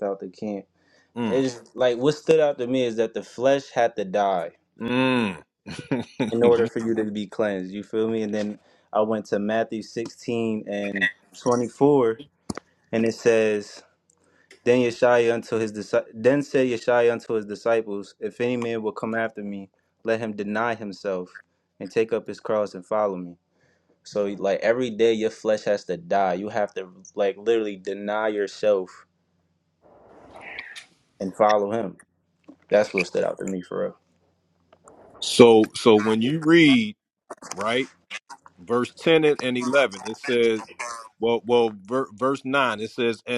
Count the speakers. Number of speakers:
2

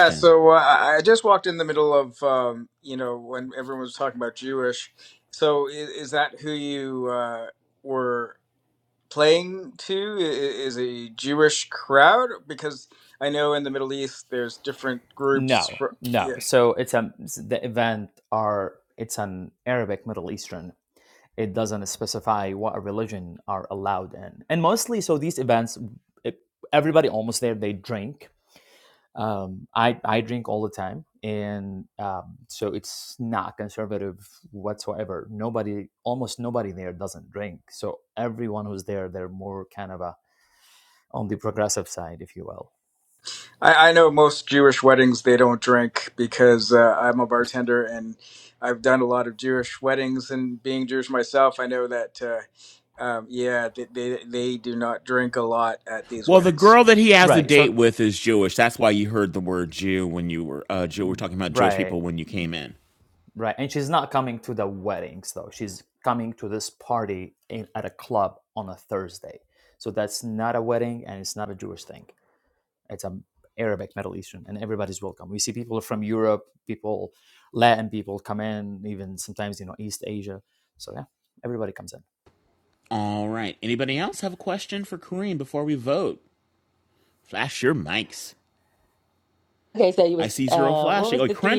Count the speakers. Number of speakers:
4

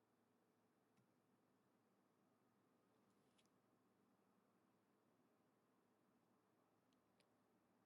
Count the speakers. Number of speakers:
0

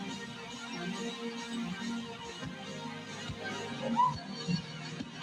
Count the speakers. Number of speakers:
0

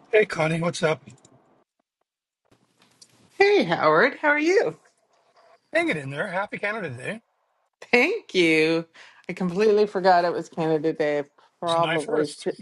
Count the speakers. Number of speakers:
2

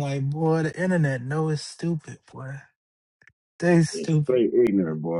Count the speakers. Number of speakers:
2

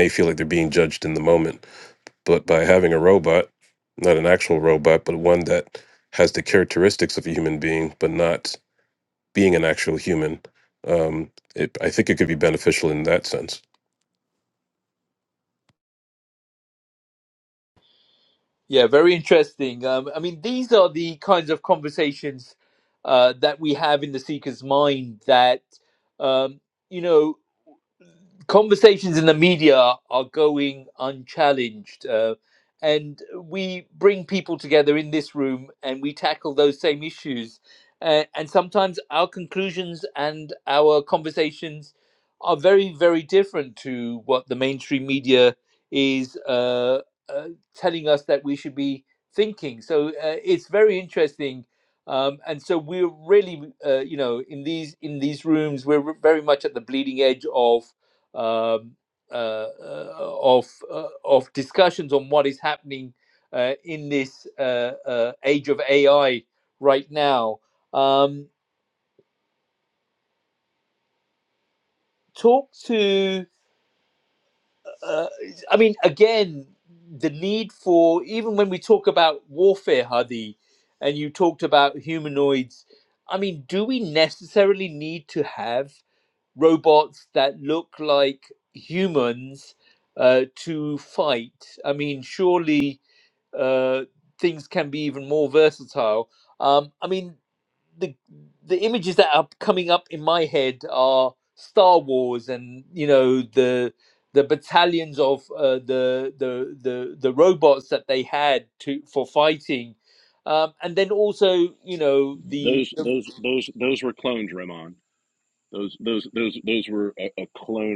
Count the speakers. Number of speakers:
3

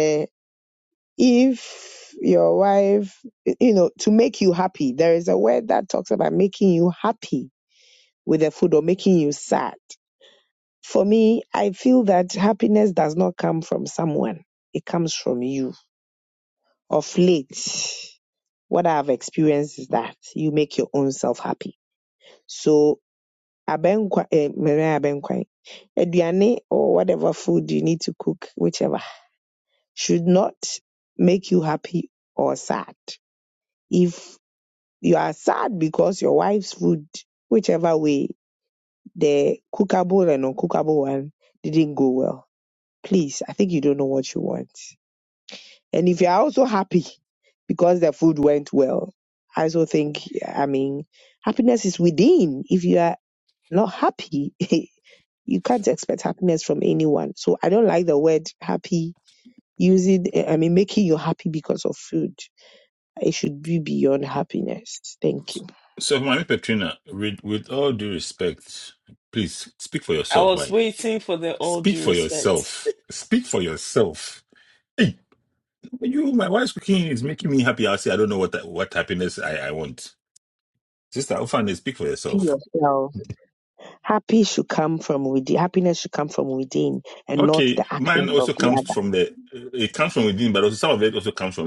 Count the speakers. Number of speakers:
3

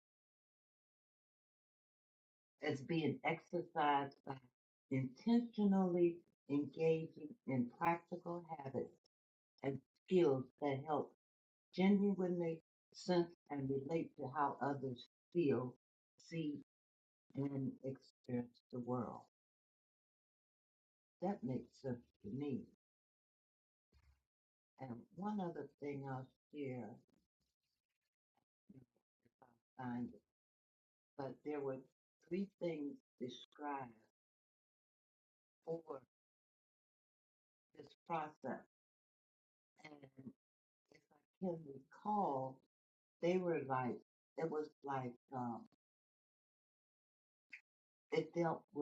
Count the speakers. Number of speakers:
1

